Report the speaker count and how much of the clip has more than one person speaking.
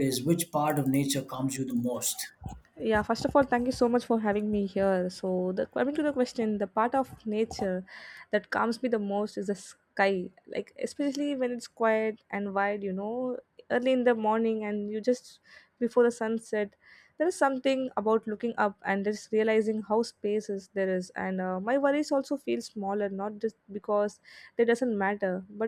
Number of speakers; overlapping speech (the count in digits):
2, no overlap